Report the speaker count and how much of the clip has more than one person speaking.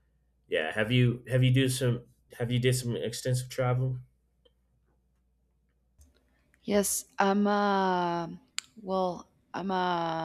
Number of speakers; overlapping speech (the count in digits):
2, no overlap